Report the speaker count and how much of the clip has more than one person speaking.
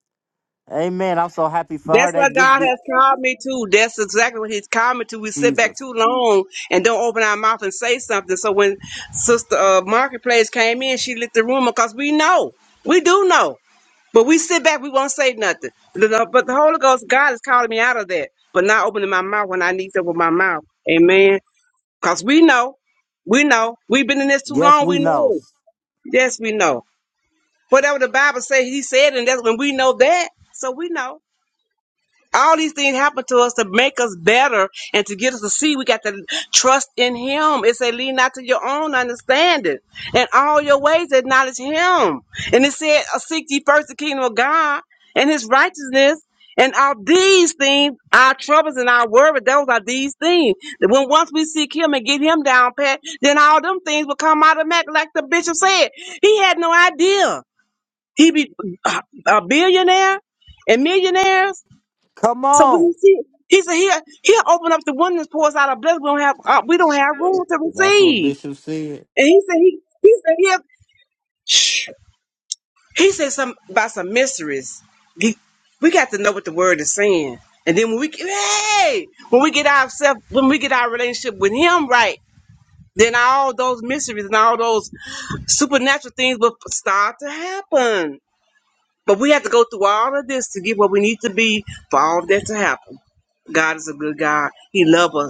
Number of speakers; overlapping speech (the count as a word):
two, about 3%